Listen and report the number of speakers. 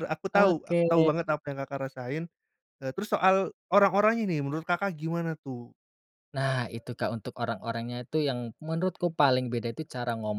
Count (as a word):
two